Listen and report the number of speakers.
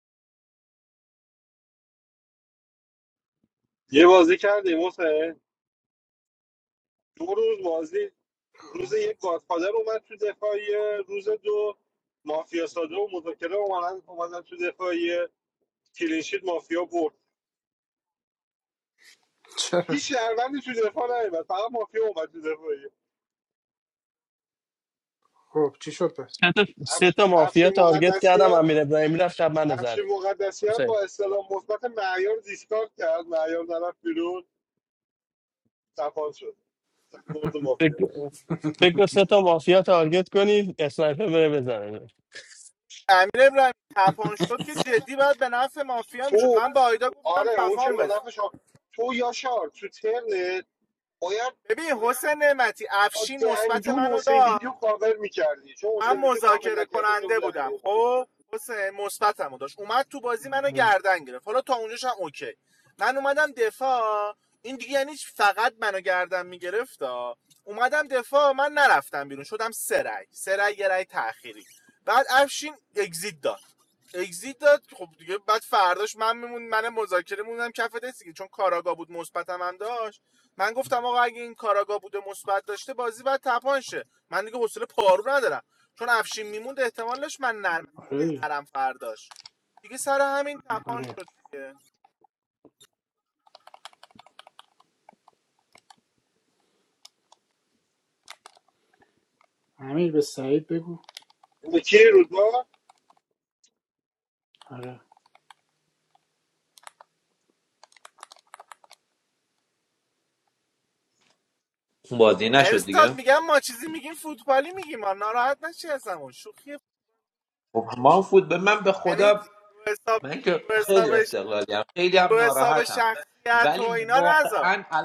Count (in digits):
5